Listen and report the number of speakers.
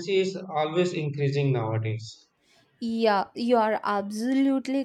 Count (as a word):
two